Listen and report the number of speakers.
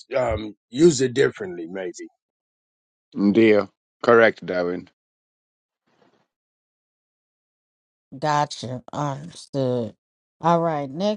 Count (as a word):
three